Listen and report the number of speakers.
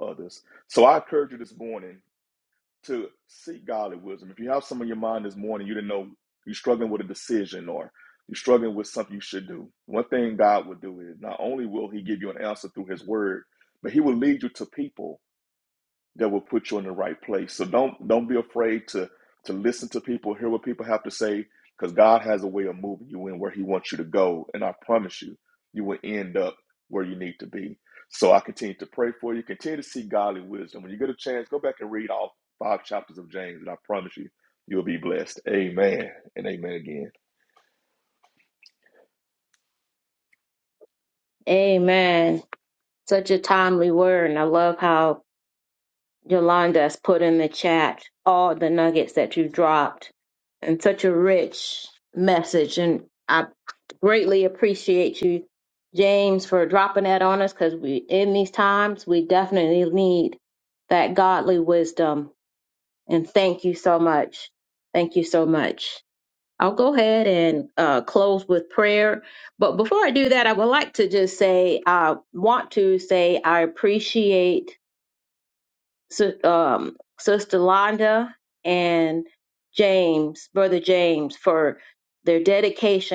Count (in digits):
2